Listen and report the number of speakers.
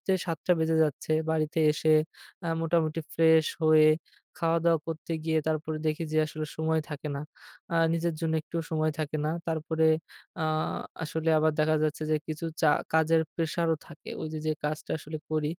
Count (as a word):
one